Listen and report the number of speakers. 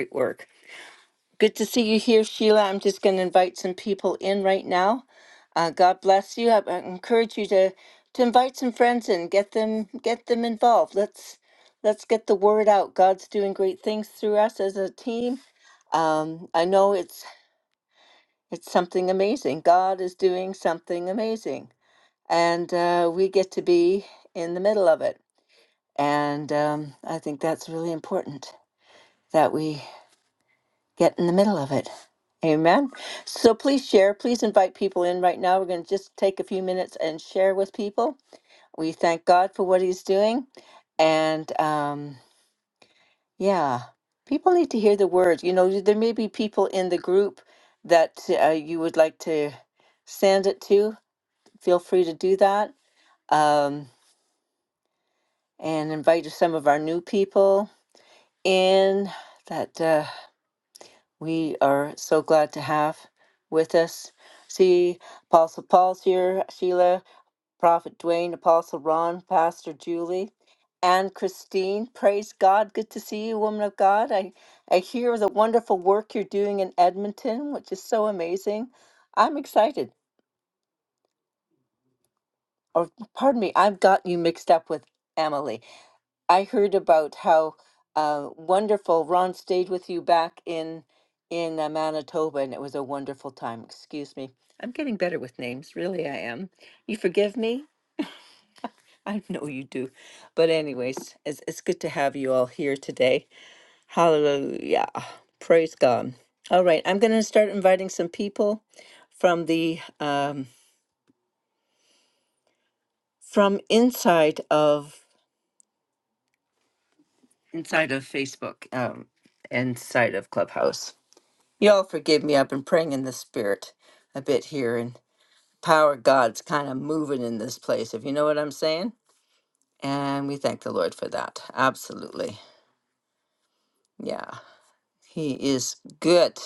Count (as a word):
one